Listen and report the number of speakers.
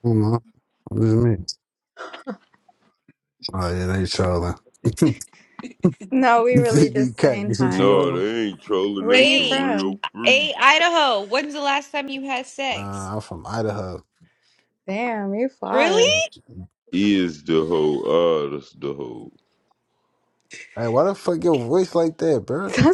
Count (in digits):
4